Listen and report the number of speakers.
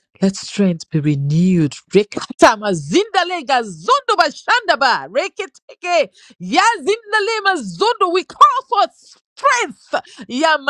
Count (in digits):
1